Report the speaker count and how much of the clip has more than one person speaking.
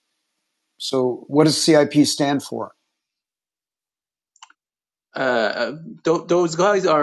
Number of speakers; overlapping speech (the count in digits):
2, no overlap